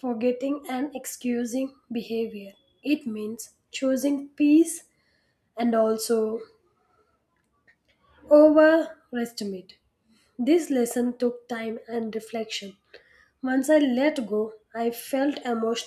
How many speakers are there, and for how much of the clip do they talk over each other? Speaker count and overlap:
1, no overlap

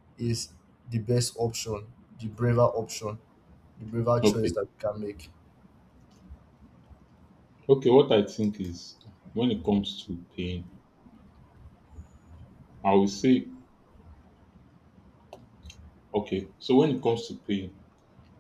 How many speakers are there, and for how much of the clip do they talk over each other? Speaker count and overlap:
2, about 2%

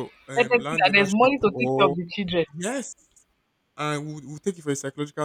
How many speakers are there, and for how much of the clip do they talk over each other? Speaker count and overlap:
2, about 30%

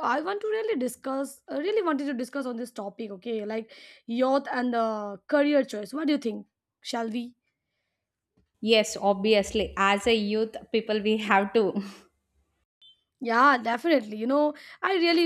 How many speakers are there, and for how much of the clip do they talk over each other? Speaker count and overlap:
2, no overlap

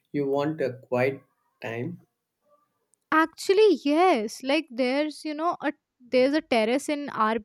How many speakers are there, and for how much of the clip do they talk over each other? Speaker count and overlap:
2, no overlap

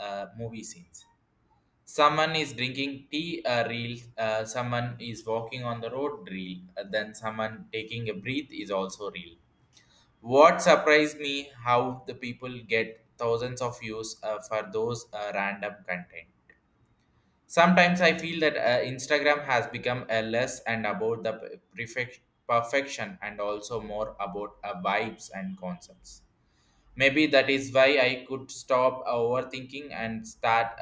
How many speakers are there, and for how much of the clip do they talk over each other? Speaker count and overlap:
1, no overlap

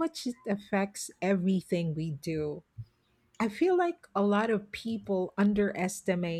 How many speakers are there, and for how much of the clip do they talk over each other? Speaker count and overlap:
1, no overlap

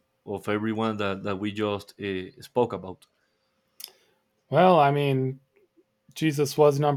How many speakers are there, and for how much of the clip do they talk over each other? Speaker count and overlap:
2, no overlap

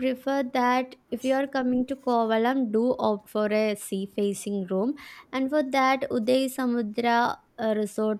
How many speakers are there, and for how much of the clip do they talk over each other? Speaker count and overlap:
1, no overlap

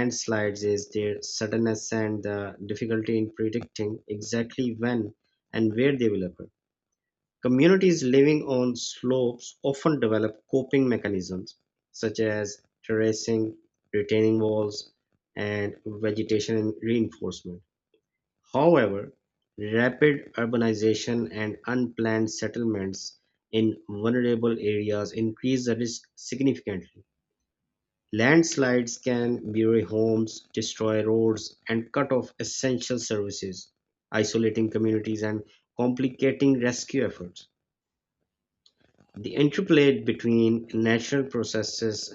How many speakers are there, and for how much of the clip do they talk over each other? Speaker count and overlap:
1, no overlap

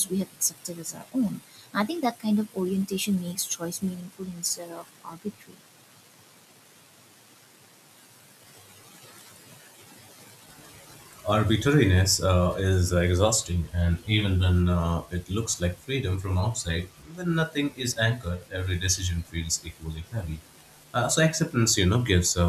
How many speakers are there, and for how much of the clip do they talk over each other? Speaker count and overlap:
2, no overlap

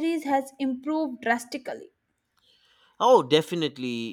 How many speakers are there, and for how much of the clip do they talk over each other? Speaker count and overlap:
2, no overlap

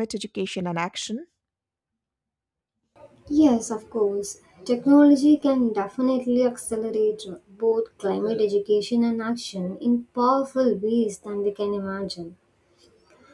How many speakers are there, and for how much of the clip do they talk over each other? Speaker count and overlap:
2, no overlap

